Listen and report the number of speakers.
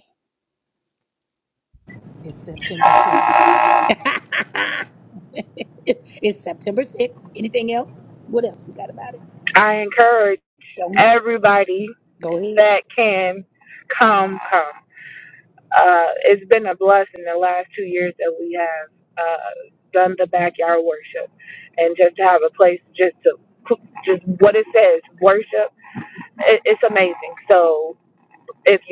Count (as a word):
three